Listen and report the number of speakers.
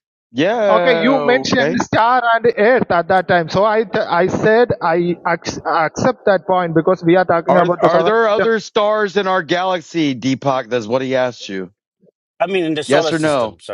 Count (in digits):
3